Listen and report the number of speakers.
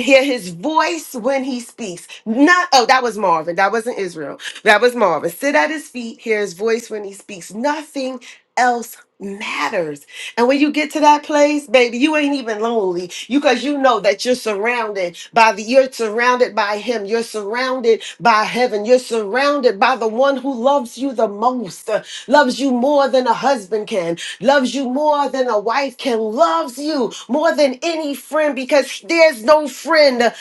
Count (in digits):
1